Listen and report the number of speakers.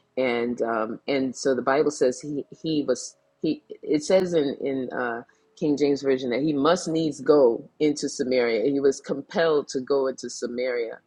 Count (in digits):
1